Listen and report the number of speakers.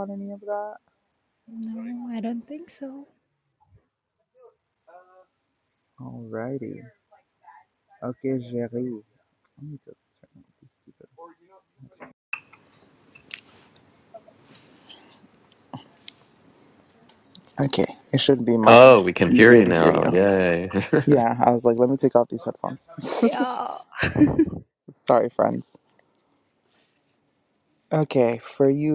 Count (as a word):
three